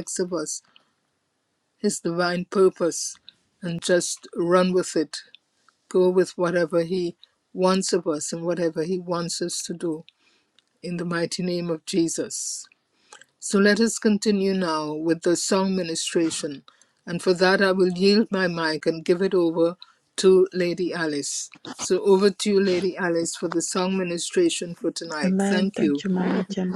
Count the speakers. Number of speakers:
two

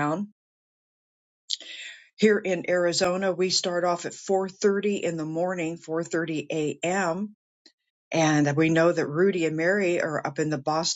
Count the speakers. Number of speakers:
one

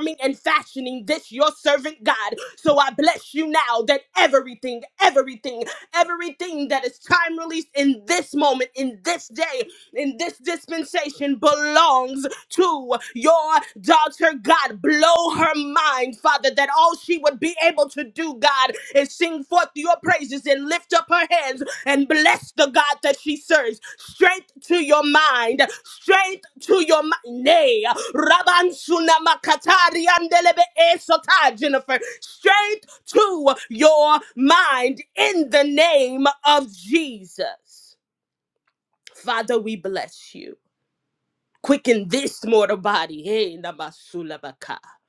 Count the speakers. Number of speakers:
one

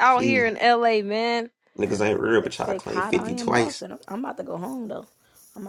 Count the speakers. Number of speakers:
three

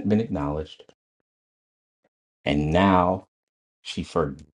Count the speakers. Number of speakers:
one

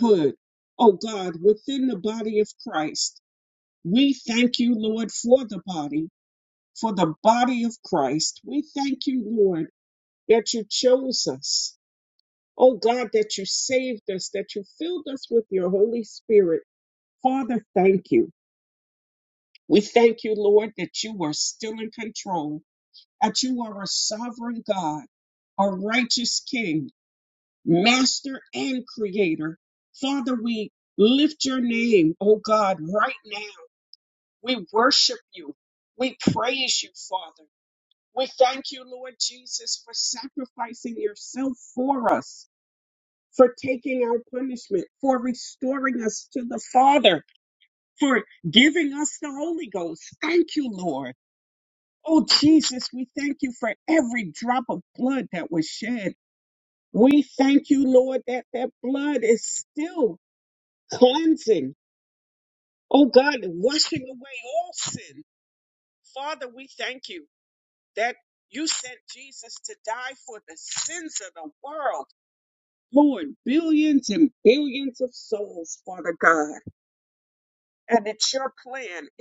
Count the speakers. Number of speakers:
one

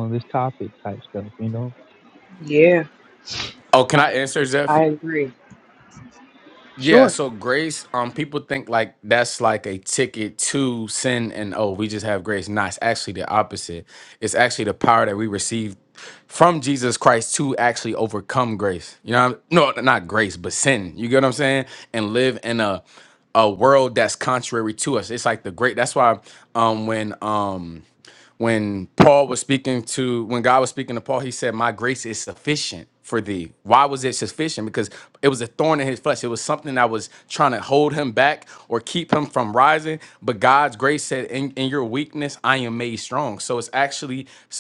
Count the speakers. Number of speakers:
three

